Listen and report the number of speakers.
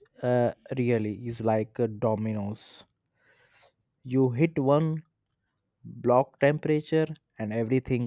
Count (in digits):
1